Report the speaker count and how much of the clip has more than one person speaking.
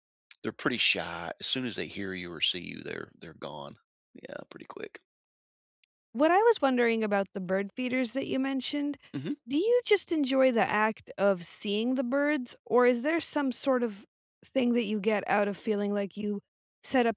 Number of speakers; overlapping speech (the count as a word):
two, no overlap